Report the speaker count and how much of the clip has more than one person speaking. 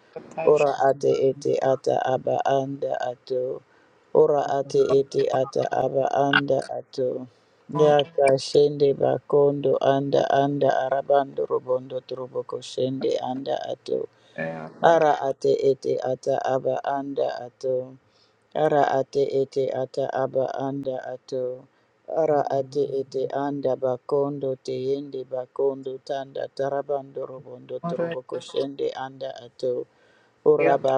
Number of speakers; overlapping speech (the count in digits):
2, about 2%